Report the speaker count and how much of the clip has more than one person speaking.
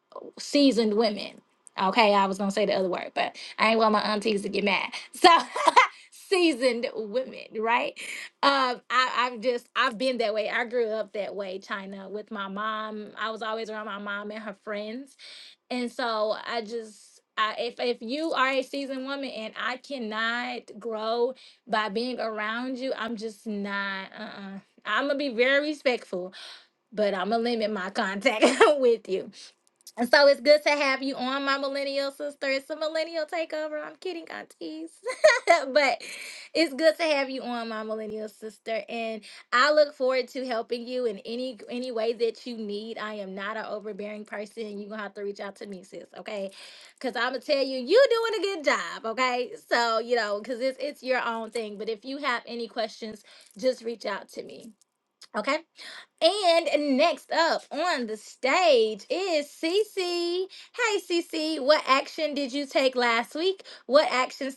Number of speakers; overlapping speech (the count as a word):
one, no overlap